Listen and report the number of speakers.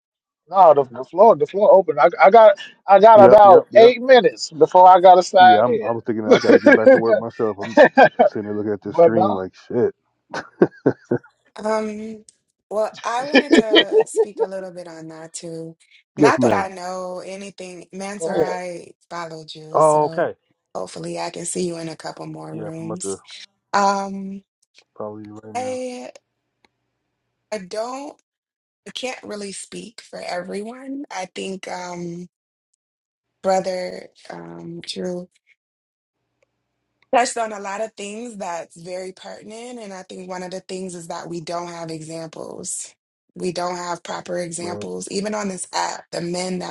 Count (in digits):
3